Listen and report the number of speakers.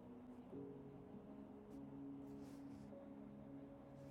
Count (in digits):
0